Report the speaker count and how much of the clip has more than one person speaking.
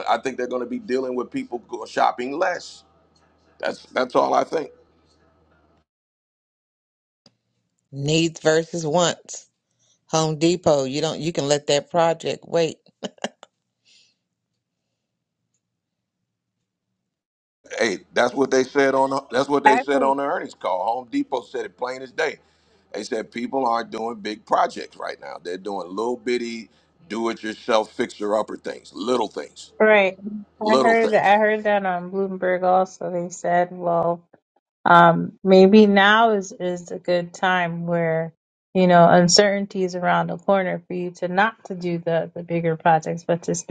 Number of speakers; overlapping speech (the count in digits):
3, about 2%